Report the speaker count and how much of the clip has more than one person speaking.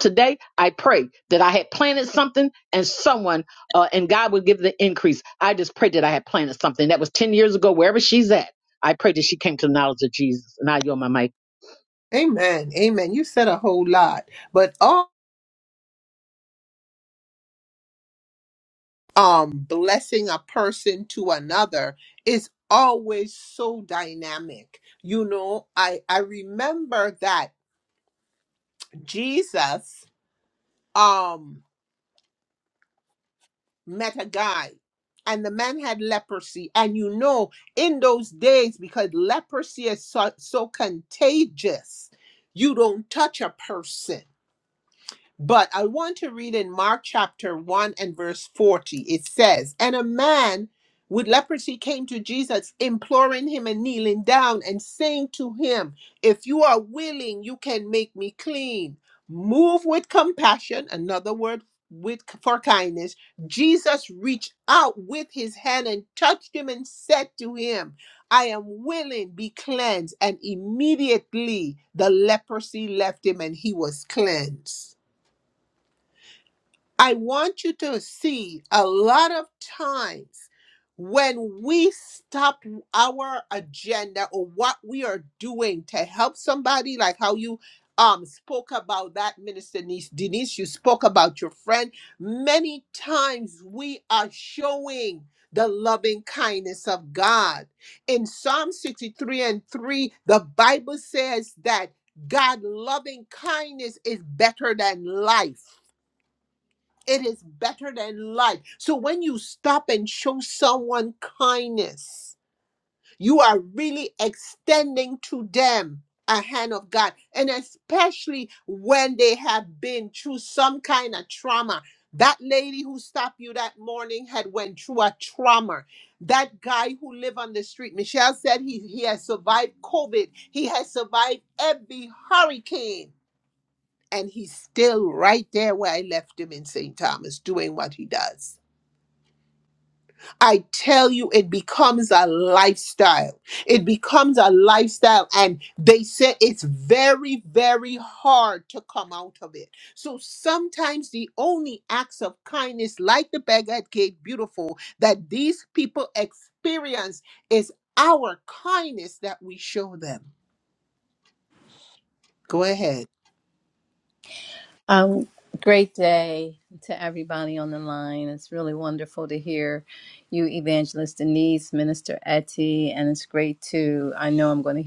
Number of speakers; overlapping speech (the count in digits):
3, no overlap